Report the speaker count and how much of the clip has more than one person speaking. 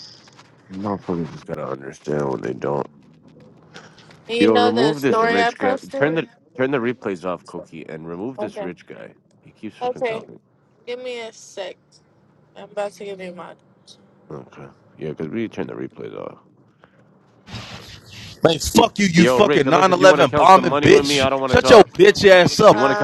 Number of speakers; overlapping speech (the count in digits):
3, about 25%